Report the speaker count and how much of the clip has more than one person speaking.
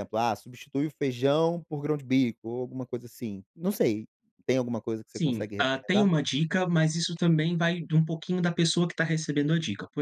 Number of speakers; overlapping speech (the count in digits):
2, about 9%